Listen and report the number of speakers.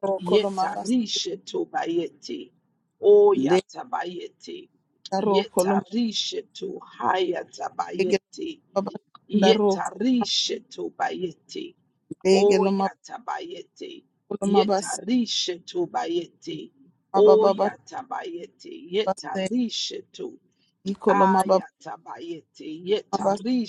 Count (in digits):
2